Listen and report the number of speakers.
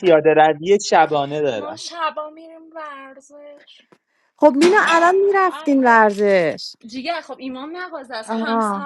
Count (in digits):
3